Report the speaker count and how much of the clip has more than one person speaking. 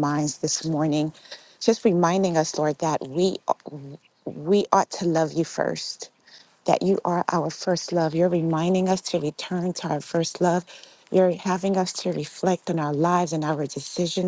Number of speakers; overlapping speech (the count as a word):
one, no overlap